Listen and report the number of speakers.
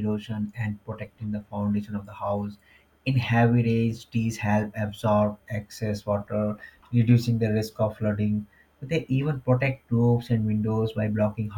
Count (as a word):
one